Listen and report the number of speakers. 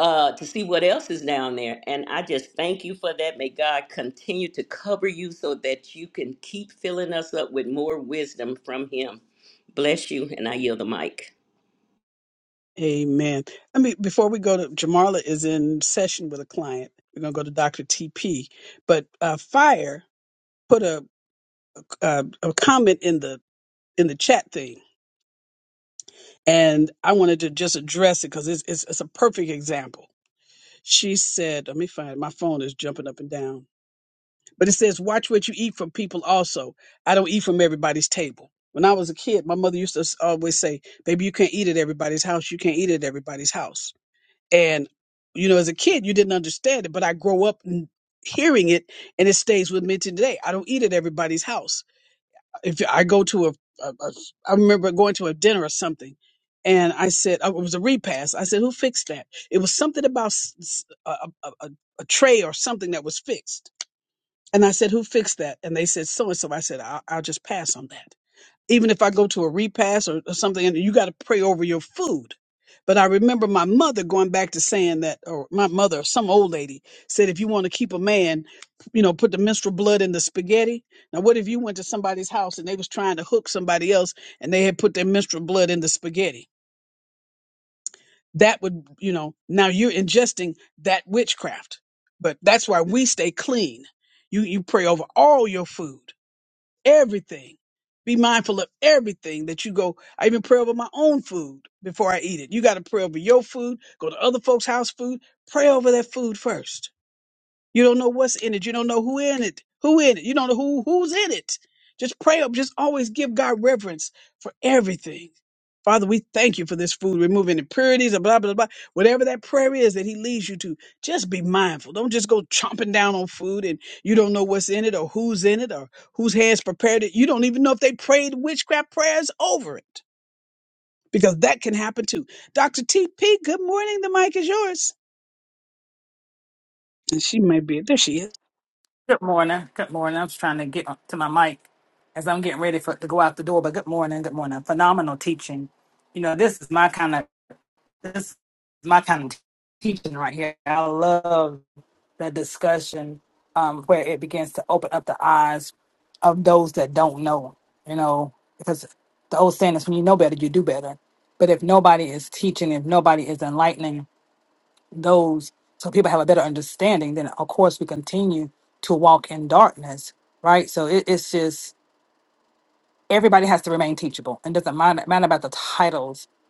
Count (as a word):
three